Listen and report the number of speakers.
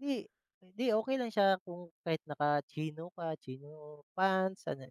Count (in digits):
1